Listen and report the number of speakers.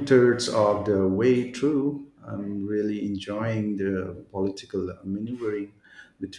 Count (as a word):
one